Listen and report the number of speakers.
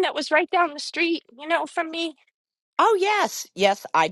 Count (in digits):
2